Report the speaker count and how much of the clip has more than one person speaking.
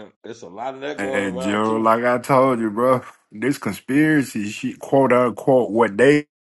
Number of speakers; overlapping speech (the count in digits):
2, about 14%